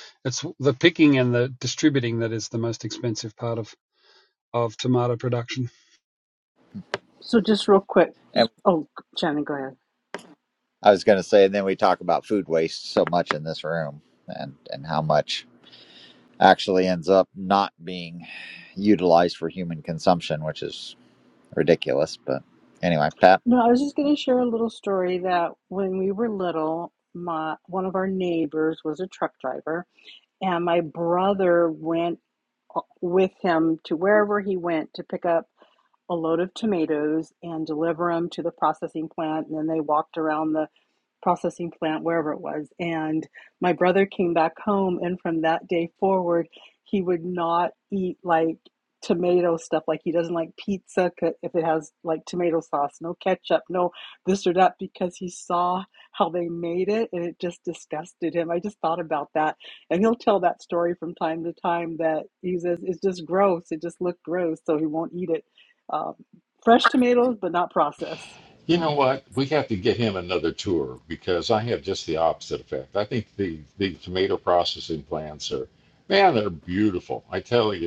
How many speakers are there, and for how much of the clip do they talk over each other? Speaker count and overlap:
four, under 1%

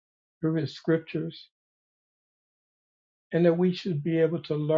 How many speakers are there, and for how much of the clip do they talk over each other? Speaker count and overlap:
one, no overlap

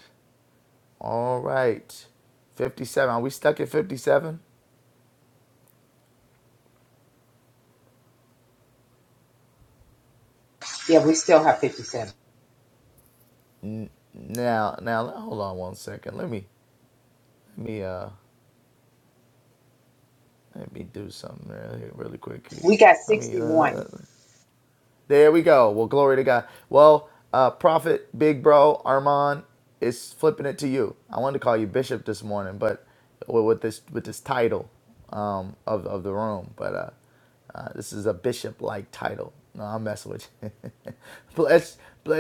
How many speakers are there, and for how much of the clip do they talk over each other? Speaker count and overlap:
two, about 2%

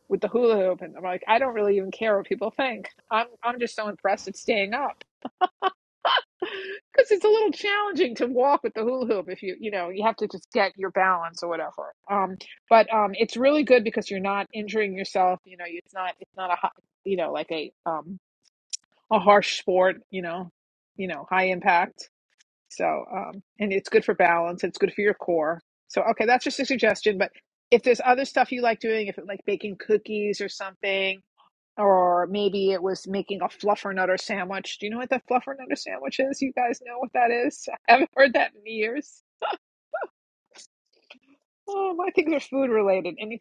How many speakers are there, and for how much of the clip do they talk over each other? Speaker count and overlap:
one, no overlap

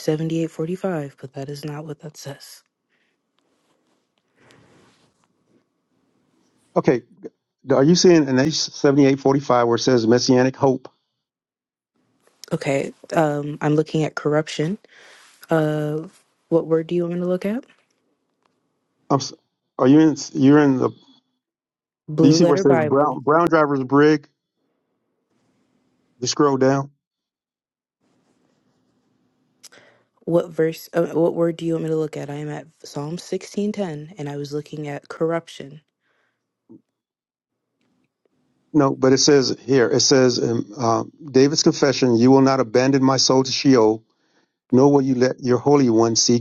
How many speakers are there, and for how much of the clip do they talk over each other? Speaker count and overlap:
two, about 2%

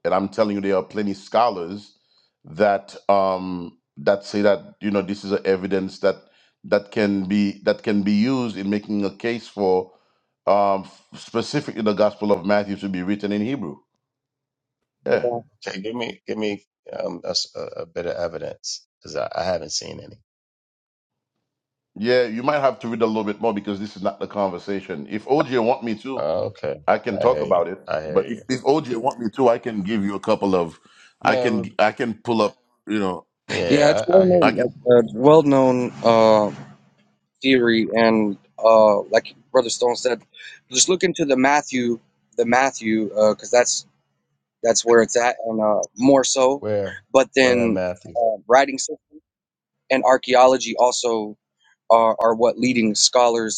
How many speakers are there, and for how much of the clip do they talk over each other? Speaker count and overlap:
three, about 6%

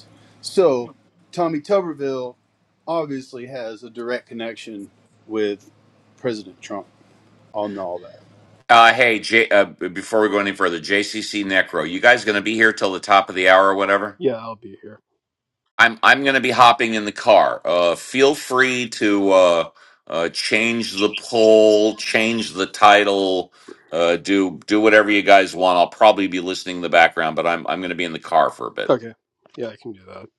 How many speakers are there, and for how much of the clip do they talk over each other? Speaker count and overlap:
three, under 1%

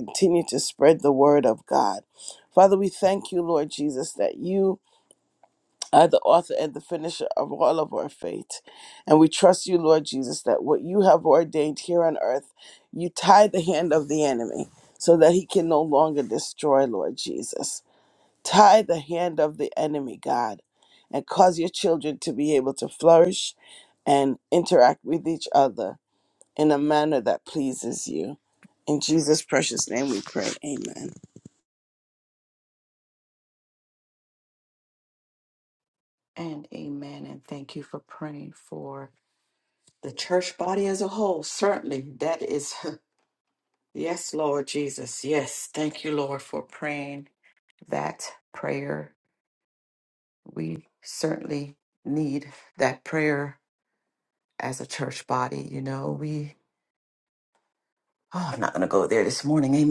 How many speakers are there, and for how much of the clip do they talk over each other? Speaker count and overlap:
two, no overlap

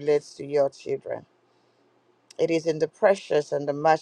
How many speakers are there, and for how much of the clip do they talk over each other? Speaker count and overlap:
one, no overlap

